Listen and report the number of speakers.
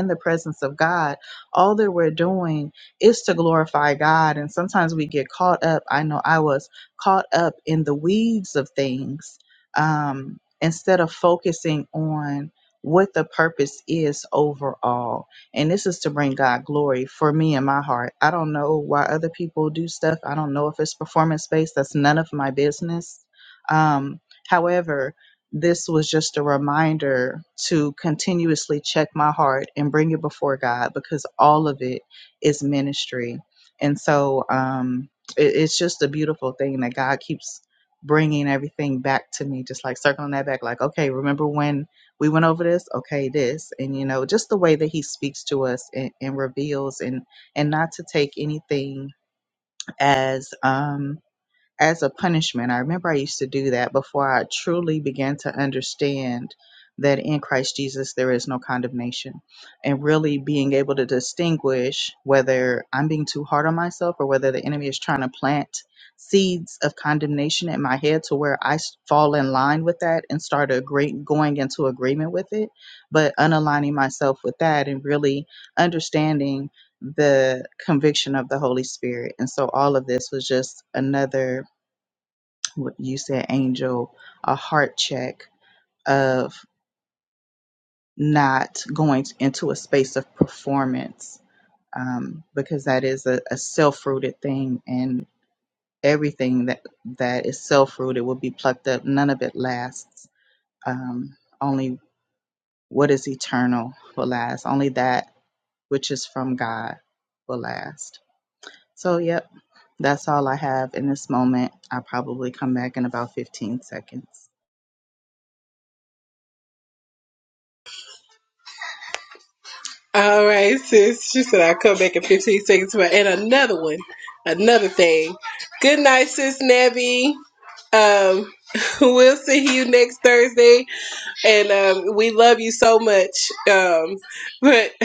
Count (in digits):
2